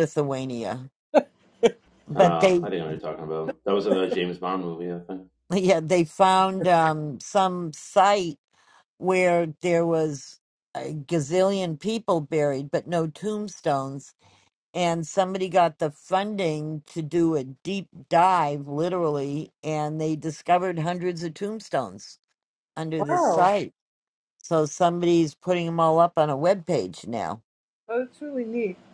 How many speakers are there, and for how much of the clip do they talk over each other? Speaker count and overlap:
three, about 4%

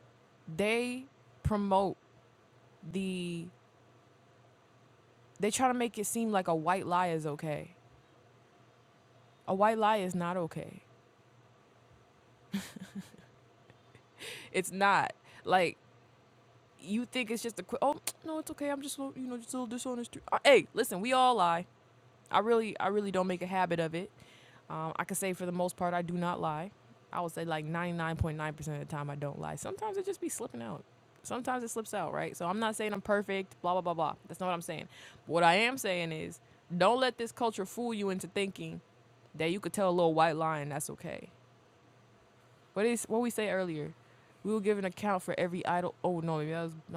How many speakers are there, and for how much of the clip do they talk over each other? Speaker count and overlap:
one, no overlap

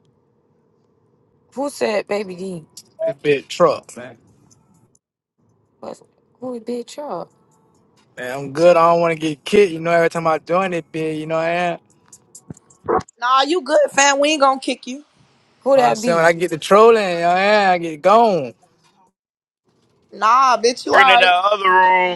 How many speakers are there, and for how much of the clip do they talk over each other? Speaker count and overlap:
four, about 4%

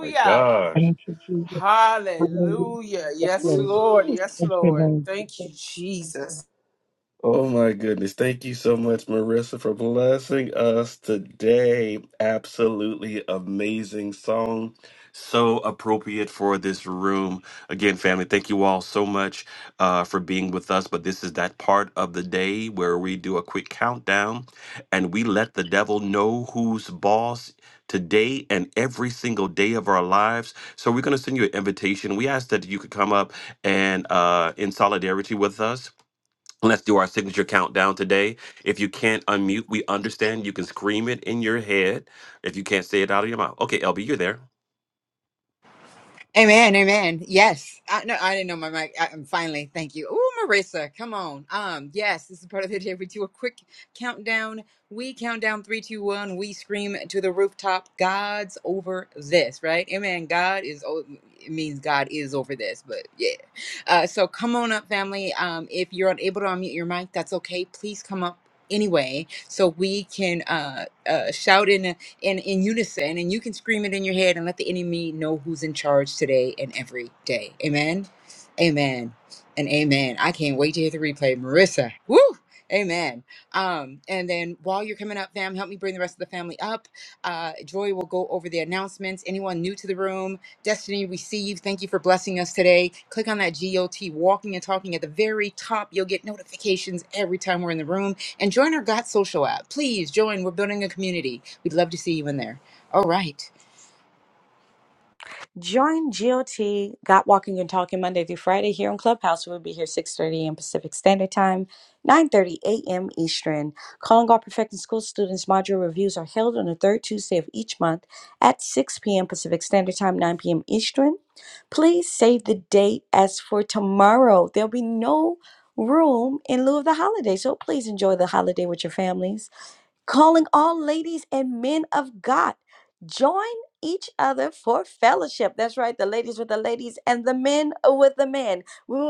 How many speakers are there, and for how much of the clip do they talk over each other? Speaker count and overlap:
five, about 1%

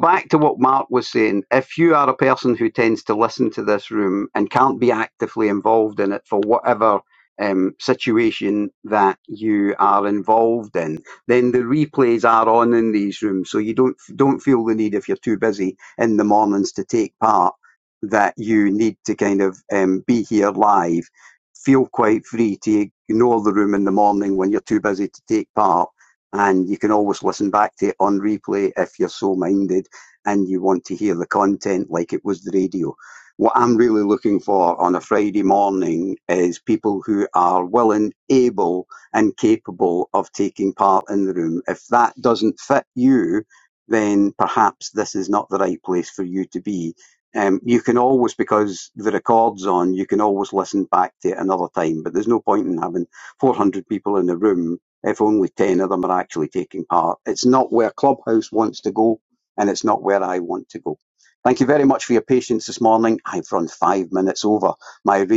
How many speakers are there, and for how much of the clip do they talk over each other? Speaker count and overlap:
one, no overlap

